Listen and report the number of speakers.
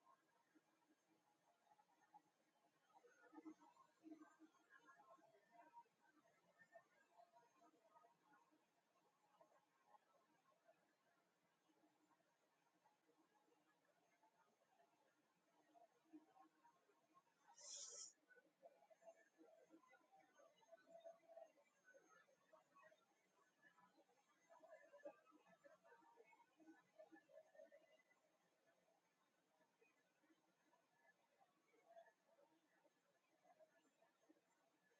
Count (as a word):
zero